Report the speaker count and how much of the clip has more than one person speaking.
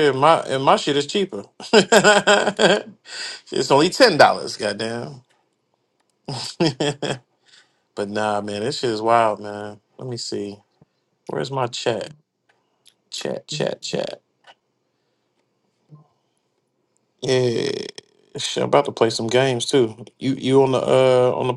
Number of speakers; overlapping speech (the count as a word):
one, no overlap